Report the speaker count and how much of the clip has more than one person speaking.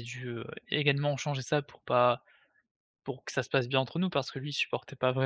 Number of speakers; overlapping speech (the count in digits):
1, no overlap